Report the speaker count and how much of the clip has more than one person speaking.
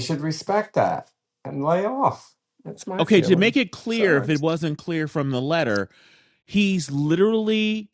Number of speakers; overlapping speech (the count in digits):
2, about 11%